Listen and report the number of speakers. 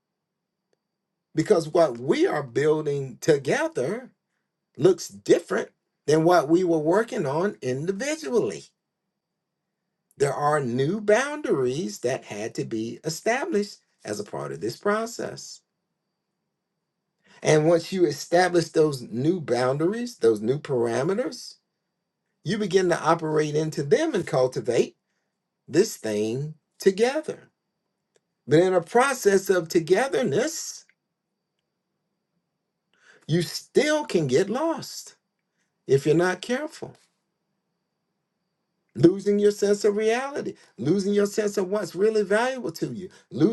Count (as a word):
one